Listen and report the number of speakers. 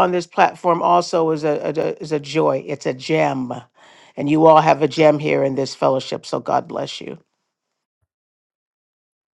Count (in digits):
1